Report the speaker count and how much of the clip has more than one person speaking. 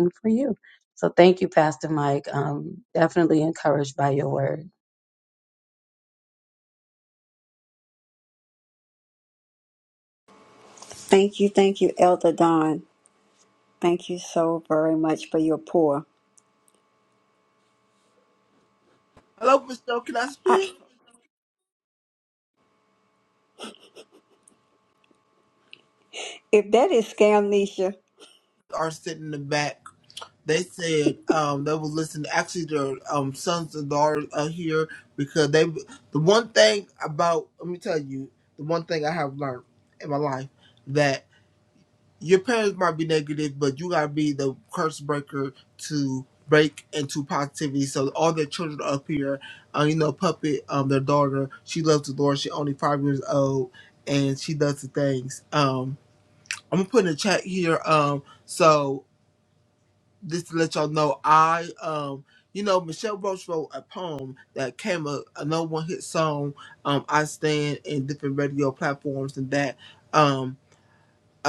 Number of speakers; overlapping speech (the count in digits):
3, under 1%